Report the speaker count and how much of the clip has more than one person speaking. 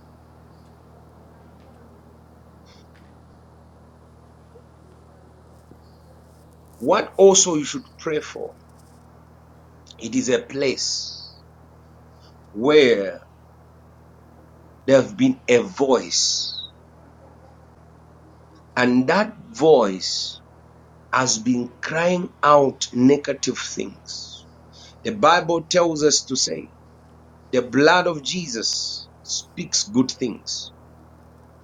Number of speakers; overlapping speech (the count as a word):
one, no overlap